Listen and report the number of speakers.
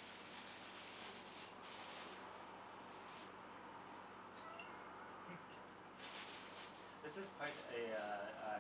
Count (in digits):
1